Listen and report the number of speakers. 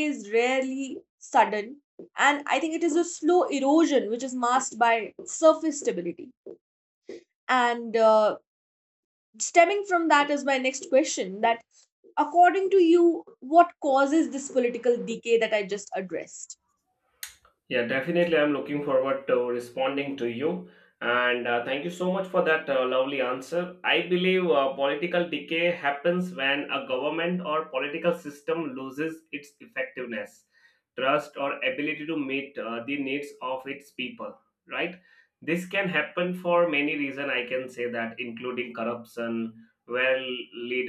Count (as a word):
two